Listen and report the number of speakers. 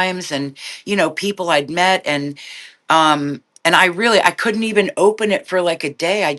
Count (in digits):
1